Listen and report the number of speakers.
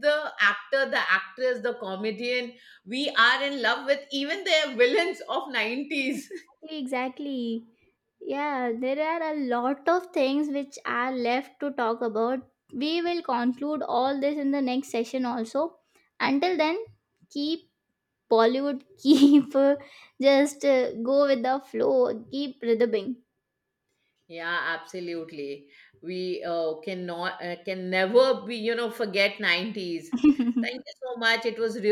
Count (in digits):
2